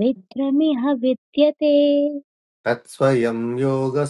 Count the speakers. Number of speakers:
2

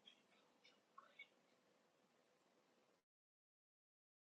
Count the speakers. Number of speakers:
0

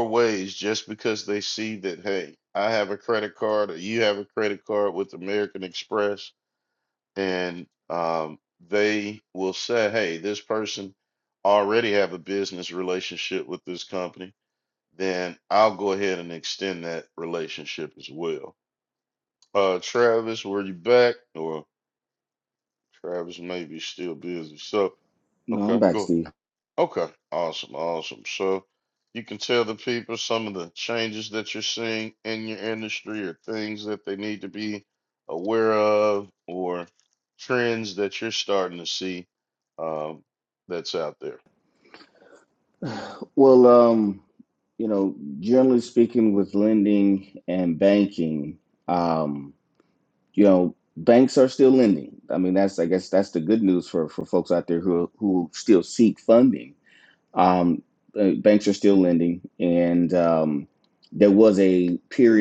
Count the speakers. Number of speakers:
2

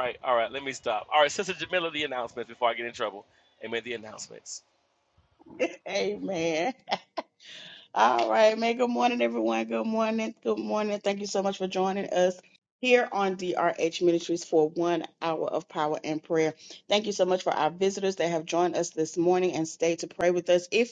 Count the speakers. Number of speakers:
2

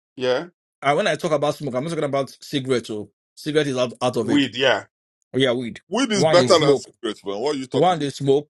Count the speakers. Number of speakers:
3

